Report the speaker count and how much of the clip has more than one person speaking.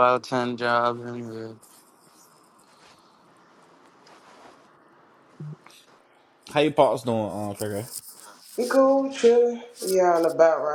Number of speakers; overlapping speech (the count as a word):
three, no overlap